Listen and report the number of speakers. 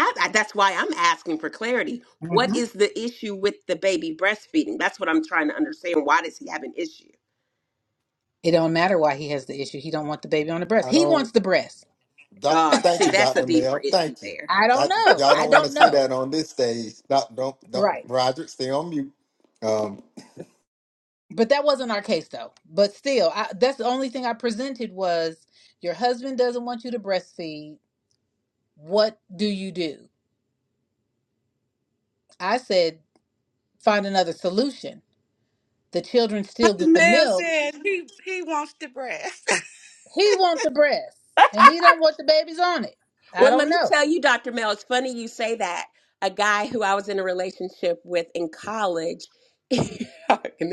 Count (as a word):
four